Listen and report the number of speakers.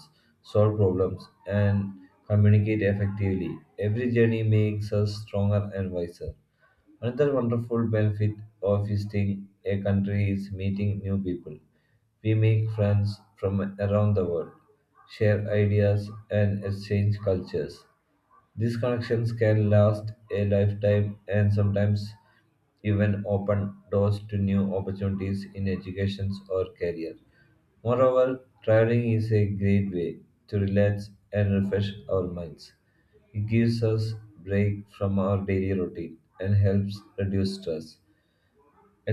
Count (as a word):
one